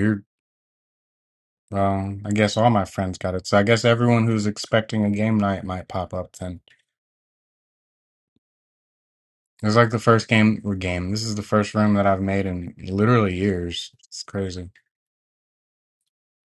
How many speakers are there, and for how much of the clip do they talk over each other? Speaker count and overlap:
one, no overlap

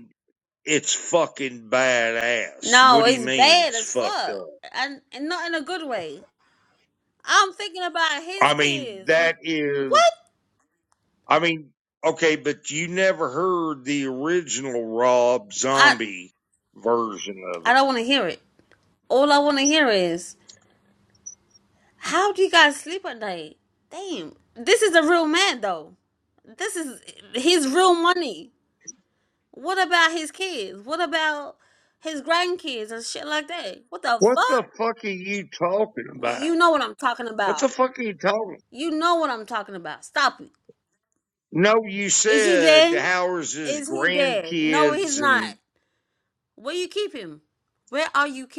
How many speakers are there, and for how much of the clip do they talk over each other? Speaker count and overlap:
two, about 15%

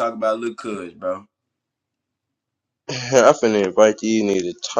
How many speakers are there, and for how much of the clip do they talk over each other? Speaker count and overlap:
two, no overlap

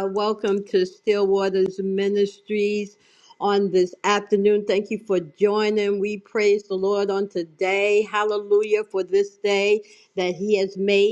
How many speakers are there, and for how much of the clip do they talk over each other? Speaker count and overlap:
one, no overlap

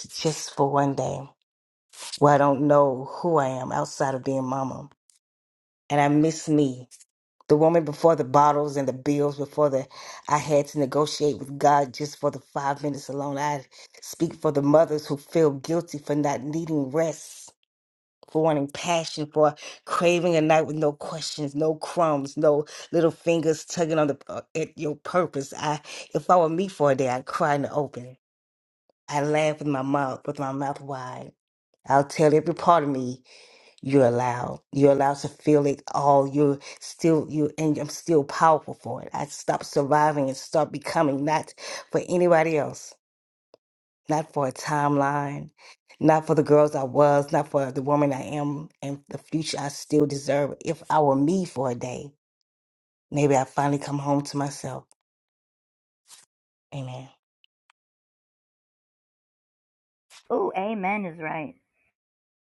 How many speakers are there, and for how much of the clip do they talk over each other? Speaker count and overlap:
two, no overlap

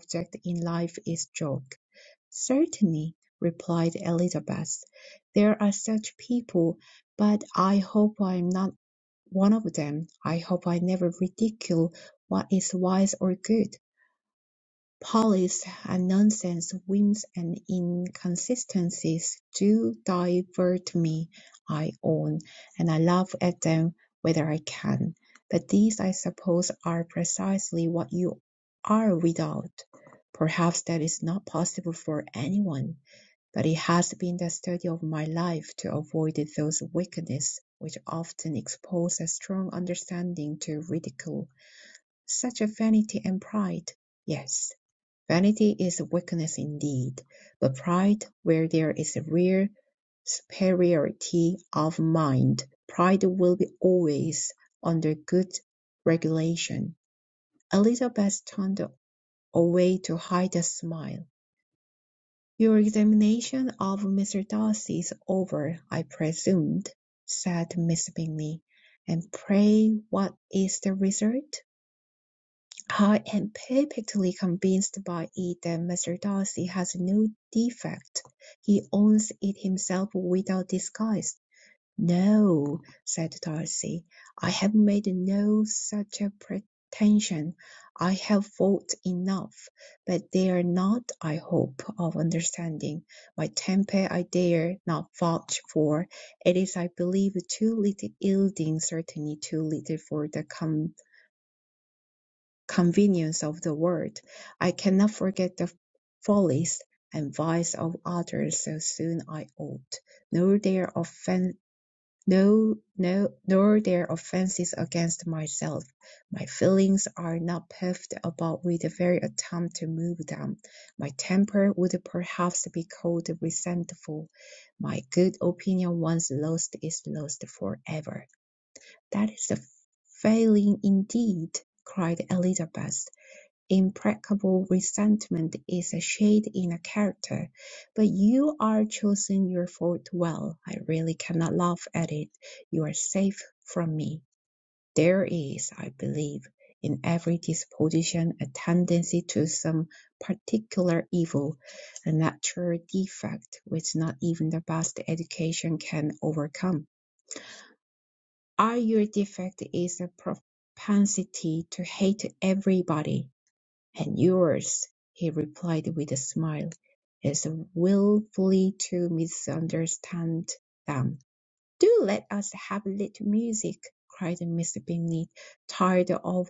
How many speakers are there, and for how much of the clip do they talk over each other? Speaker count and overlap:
one, no overlap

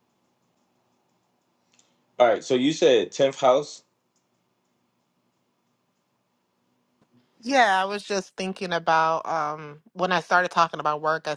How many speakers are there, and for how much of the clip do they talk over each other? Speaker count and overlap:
two, no overlap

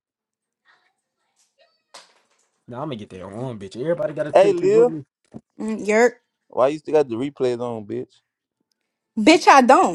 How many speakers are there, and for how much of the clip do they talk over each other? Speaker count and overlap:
three, about 6%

